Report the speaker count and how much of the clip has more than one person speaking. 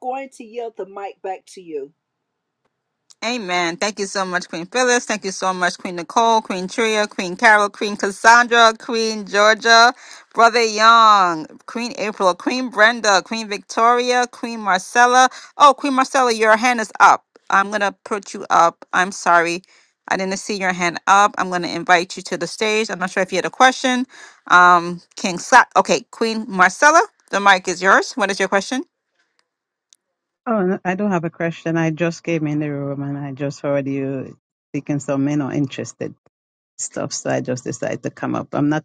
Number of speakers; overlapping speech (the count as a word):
three, no overlap